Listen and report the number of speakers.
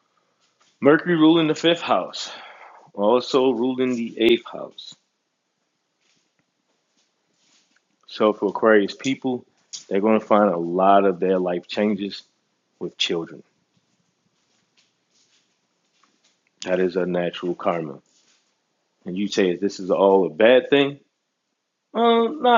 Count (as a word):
one